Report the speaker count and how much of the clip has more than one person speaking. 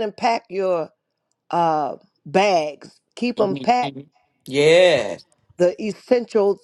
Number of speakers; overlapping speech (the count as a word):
two, about 8%